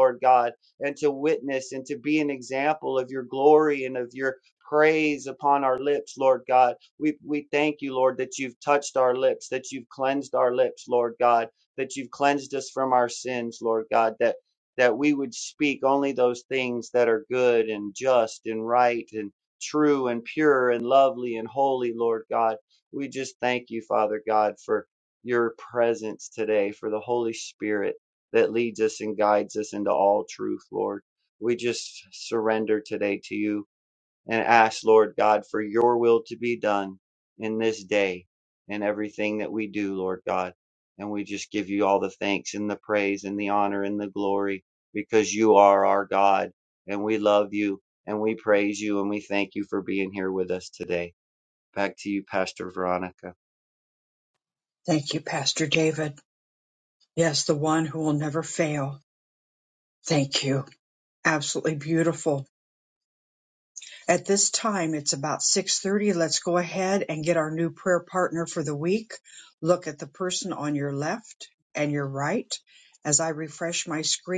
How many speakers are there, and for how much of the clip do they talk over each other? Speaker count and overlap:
two, no overlap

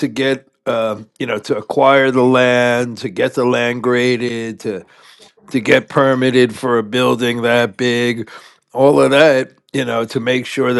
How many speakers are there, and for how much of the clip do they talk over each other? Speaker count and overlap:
one, no overlap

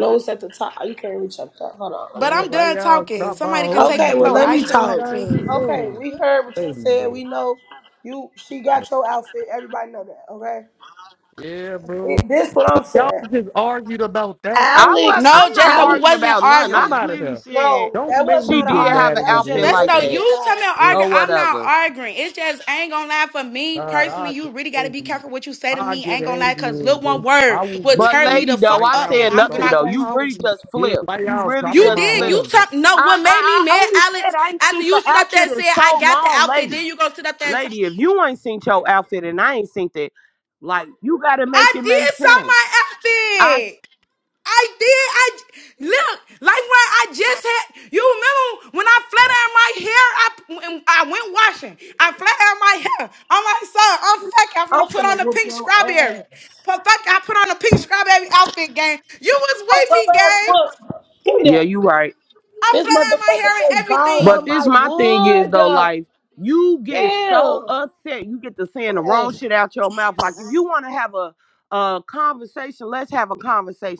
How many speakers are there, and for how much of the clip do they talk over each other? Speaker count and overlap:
four, about 42%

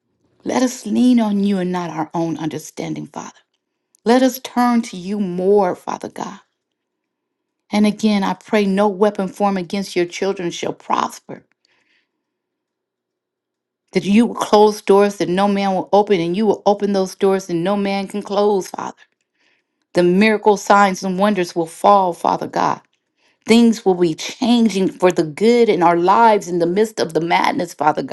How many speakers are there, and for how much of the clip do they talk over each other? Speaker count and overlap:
one, no overlap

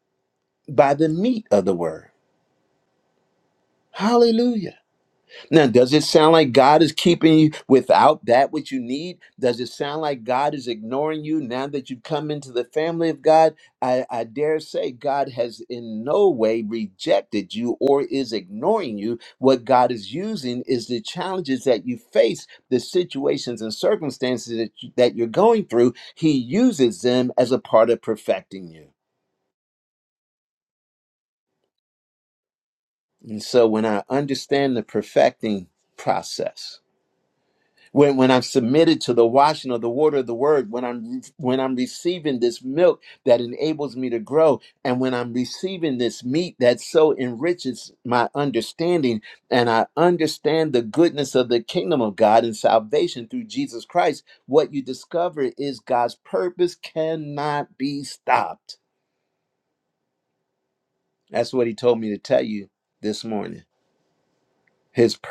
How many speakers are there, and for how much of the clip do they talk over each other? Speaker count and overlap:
one, no overlap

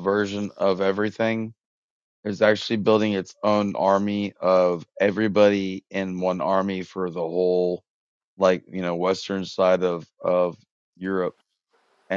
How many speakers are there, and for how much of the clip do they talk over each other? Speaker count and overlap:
one, no overlap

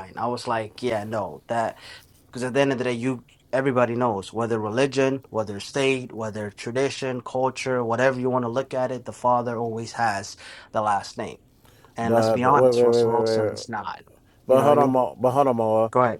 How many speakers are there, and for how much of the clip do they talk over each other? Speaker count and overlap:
two, about 12%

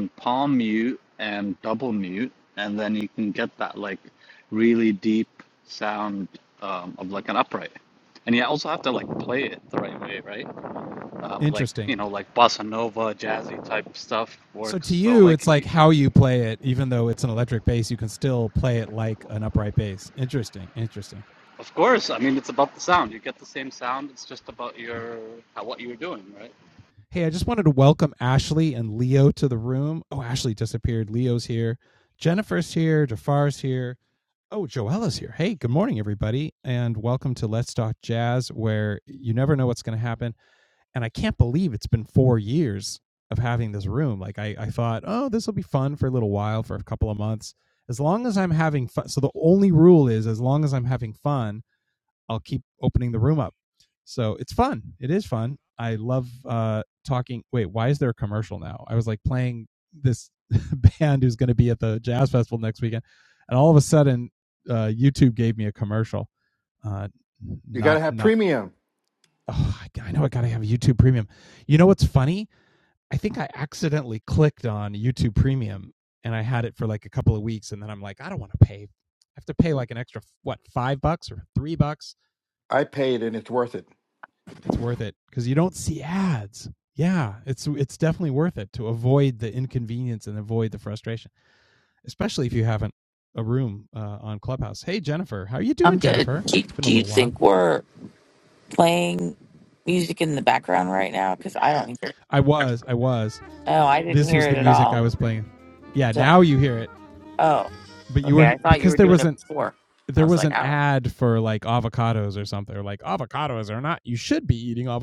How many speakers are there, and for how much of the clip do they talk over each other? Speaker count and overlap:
four, about 5%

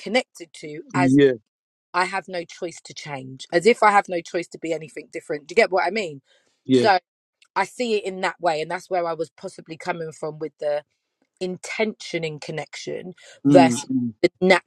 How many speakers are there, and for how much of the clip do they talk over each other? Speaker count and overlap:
two, about 5%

